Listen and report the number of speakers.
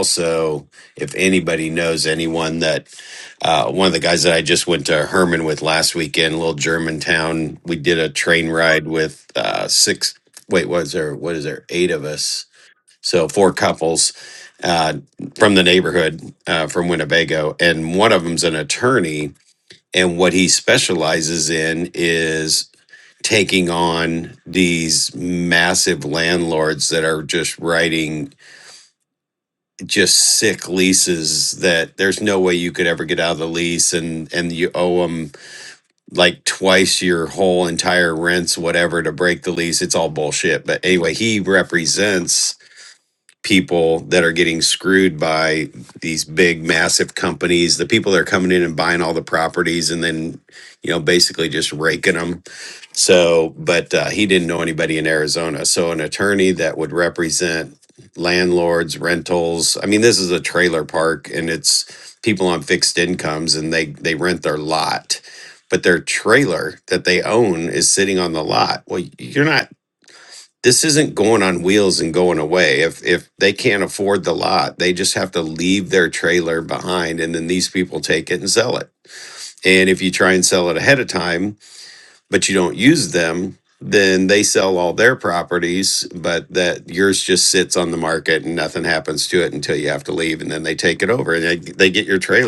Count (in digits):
1